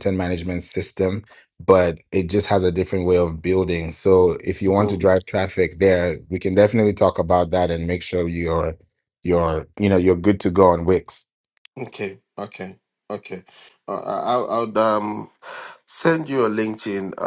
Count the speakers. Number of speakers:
two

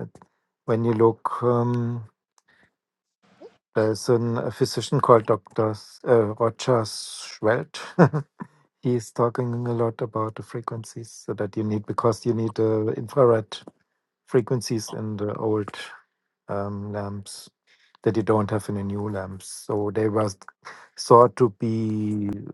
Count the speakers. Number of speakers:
one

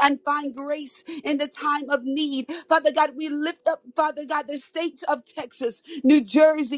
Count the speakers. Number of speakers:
one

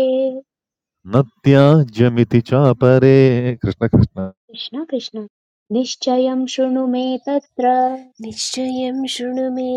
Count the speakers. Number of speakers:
three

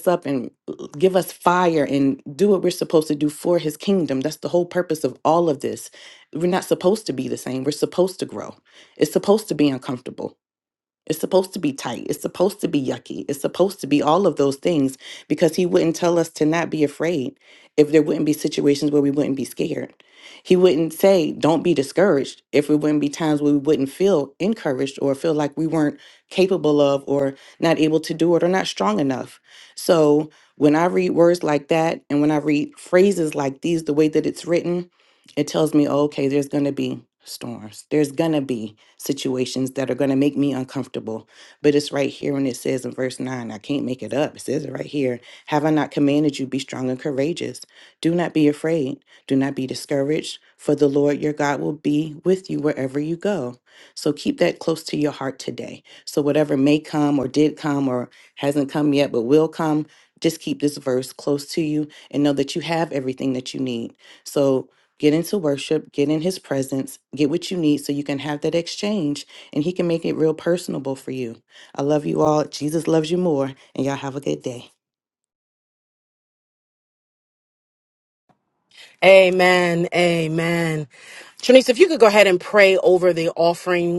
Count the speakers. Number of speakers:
two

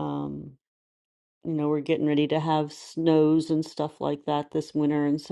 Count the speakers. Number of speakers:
one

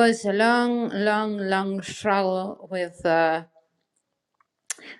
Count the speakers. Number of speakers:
one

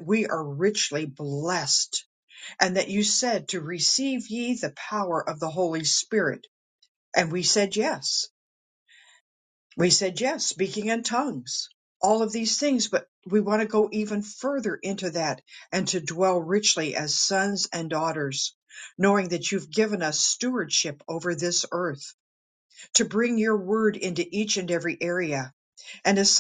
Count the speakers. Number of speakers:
one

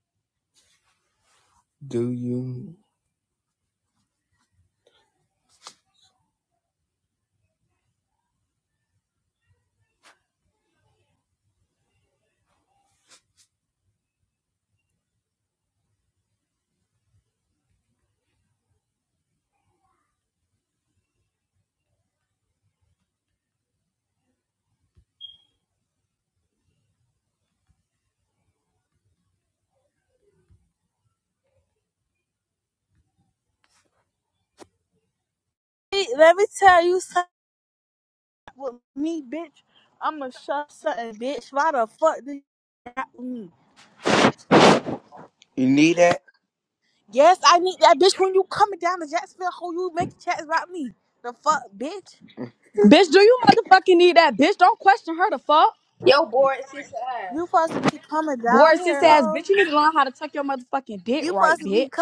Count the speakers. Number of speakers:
four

